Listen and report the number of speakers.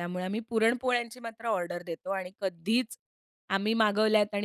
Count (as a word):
one